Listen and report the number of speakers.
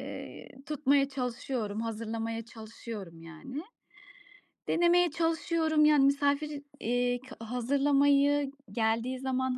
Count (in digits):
1